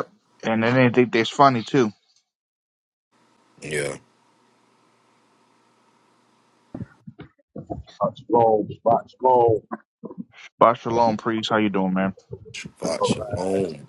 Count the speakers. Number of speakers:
3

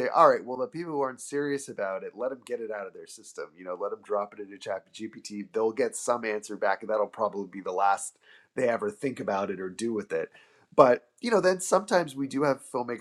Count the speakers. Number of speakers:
1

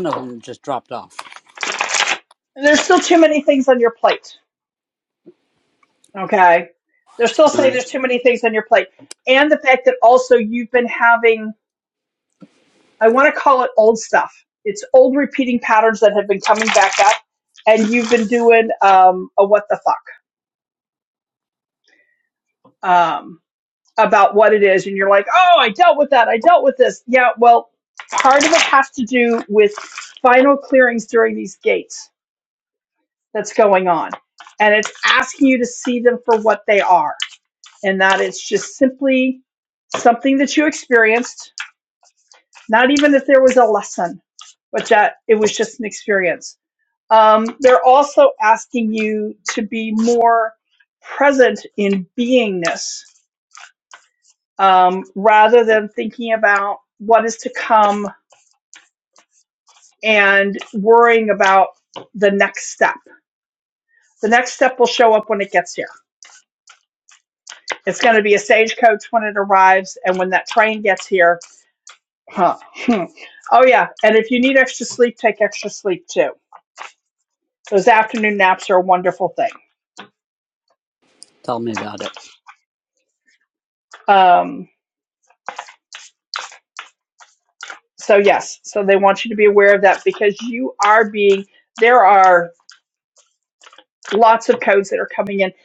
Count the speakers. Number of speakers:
2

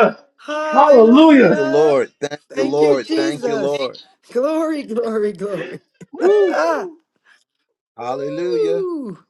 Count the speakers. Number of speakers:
3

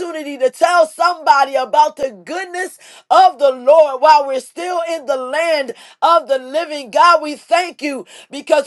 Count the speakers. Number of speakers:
1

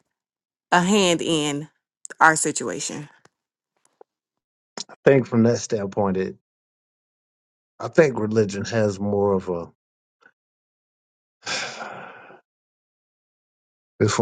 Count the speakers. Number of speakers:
2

